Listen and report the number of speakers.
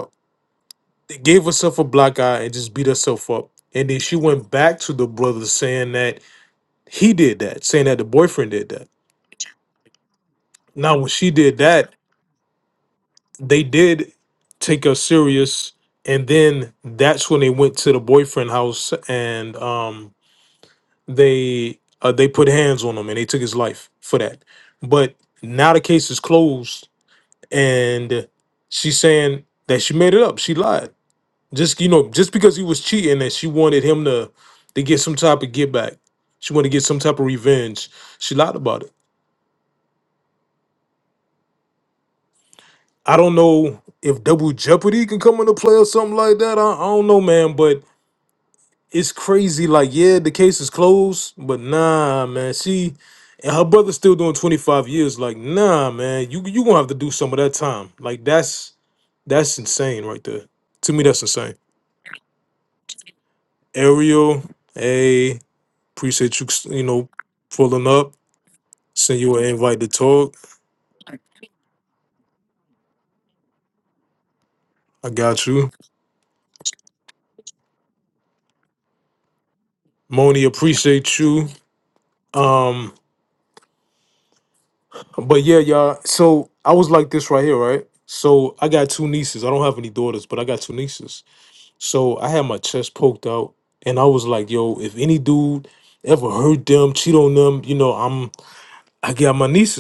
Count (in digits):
1